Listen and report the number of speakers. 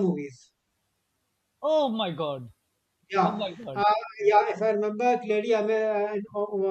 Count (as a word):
two